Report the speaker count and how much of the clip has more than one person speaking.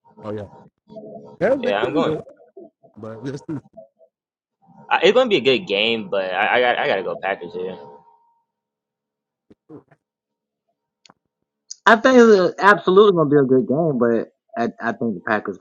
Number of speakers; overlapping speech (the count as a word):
three, about 4%